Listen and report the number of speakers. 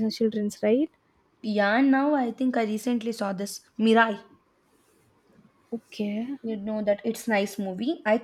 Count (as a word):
two